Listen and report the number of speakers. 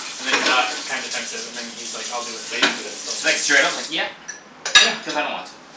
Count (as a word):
two